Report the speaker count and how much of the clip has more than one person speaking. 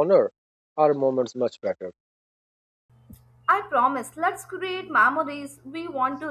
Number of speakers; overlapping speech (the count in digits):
2, no overlap